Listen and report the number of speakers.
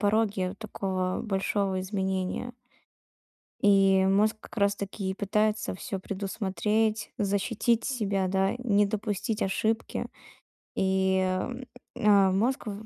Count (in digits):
1